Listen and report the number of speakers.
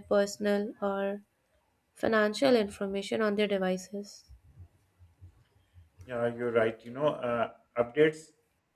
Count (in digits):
2